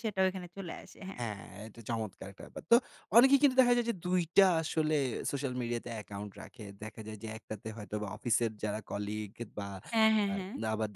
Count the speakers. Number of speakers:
2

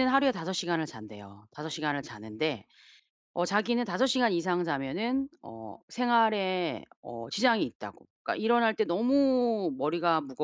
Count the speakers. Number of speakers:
1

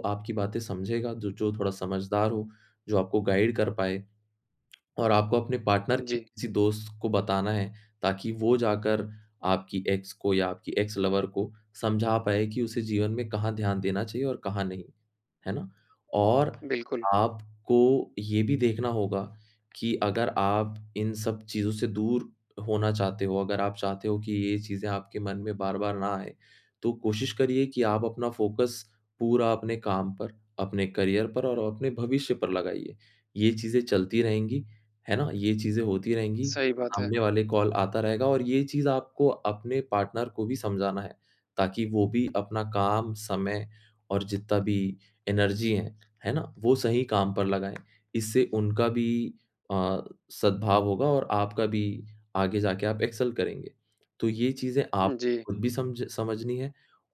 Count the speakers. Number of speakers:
2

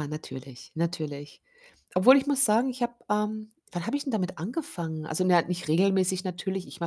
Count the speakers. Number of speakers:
1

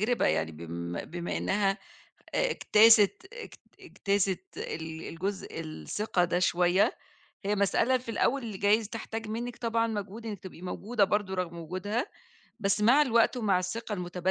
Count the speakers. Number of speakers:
1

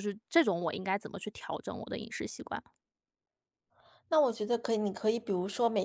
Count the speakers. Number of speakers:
2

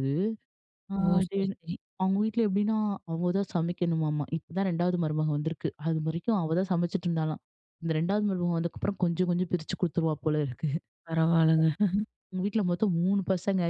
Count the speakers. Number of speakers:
2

